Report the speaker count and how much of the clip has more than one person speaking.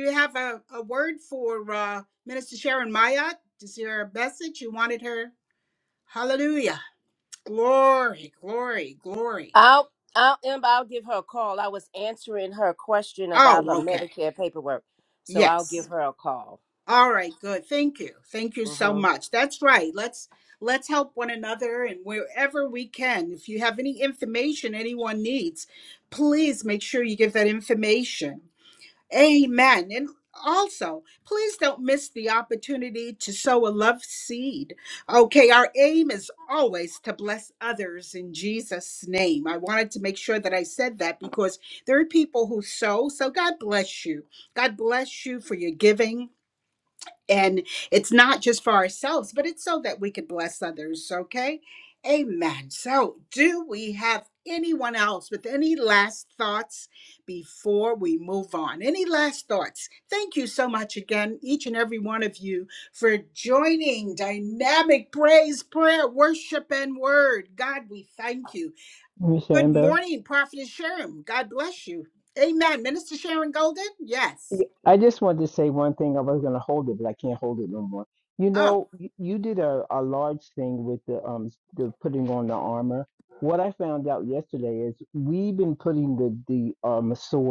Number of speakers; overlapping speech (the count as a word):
three, about 2%